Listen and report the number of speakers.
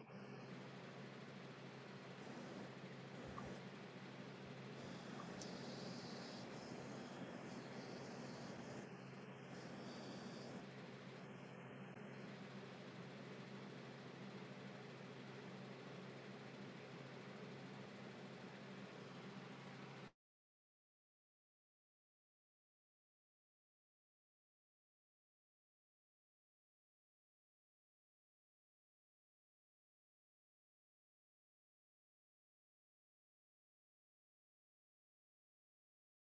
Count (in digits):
0